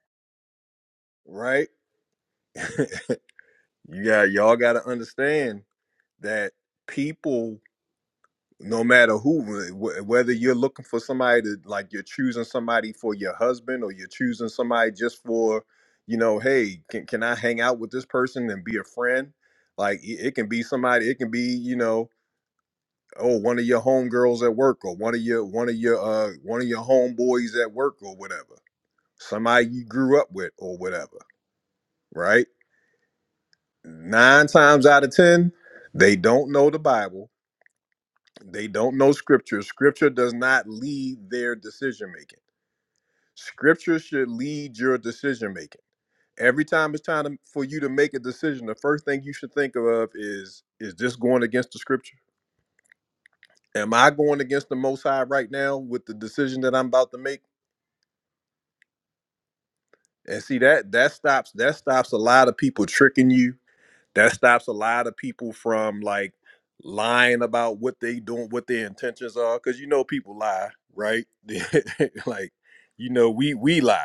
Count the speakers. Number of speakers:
one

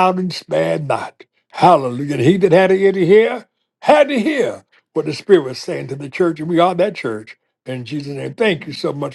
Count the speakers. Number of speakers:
one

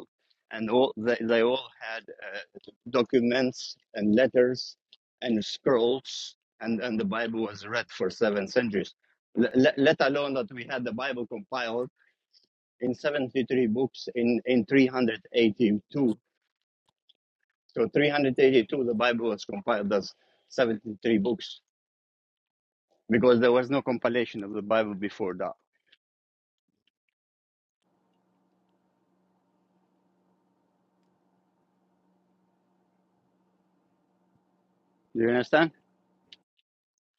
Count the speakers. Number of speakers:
one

